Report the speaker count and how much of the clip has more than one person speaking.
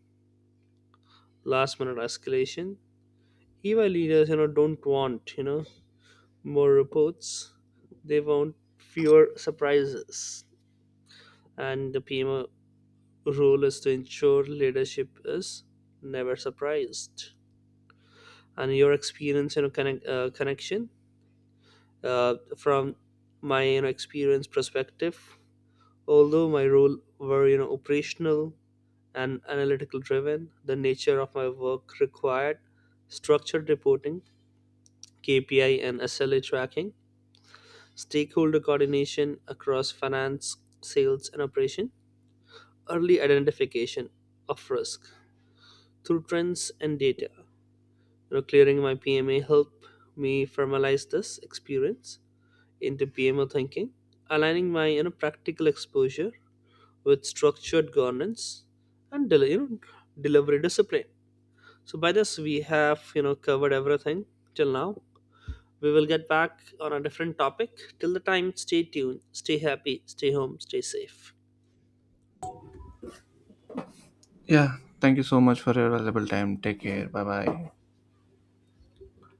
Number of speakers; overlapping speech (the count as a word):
two, no overlap